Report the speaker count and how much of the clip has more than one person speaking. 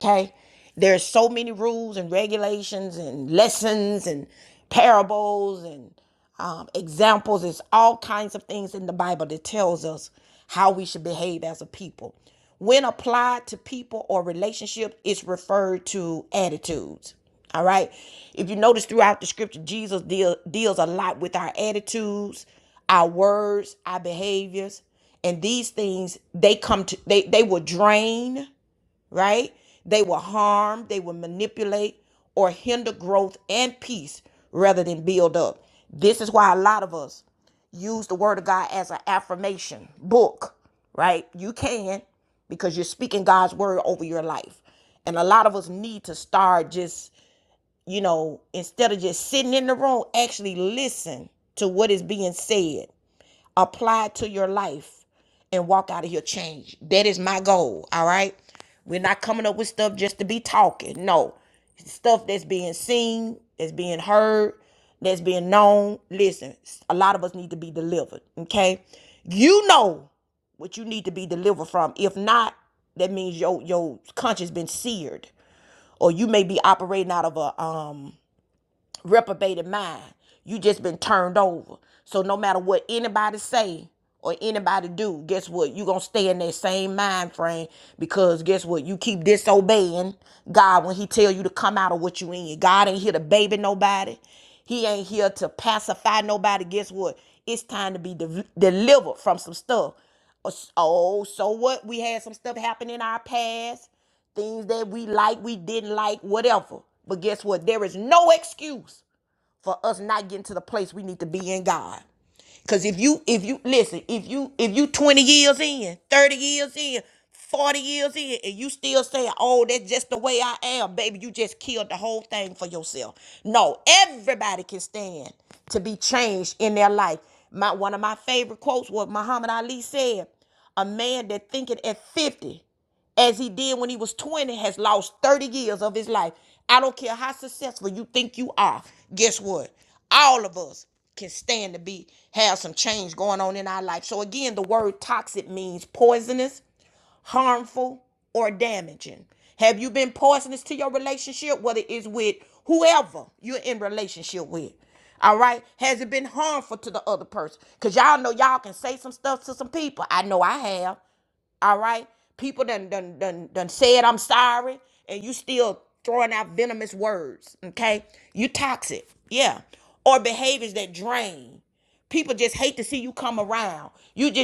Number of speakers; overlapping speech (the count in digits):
1, no overlap